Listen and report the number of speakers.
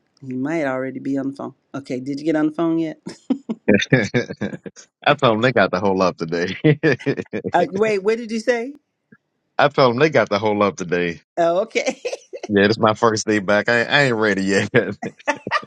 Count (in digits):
2